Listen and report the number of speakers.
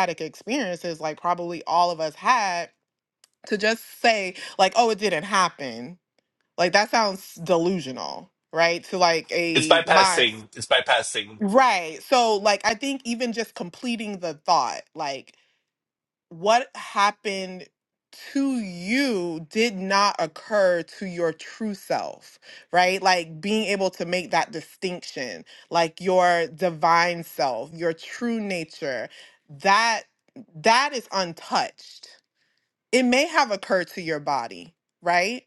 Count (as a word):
two